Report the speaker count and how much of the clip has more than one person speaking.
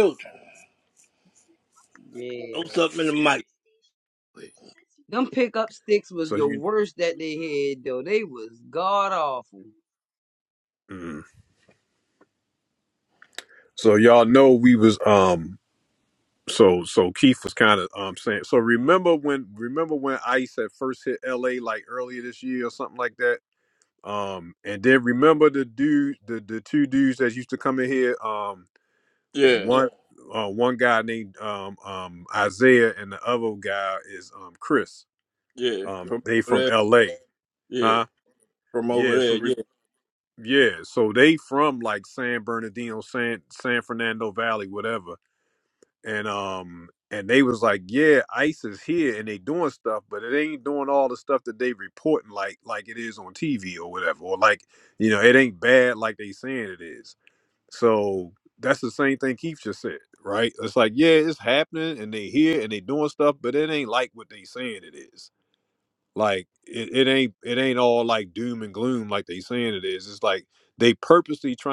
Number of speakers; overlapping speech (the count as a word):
three, about 3%